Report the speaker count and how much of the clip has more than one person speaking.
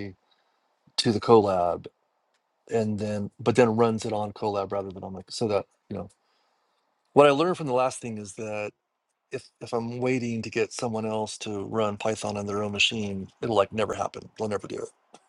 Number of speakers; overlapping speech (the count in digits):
1, no overlap